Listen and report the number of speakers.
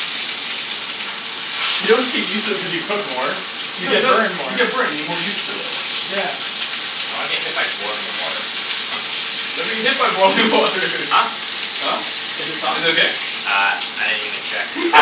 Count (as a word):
three